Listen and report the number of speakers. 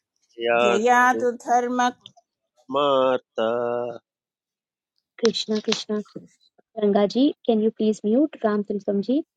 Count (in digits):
3